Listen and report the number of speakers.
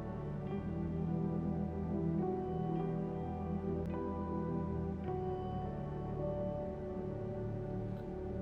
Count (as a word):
zero